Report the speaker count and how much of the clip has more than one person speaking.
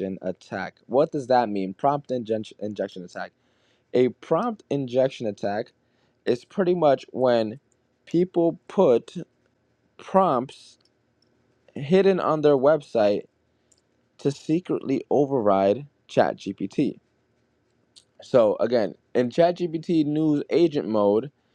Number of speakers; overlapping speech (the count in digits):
1, no overlap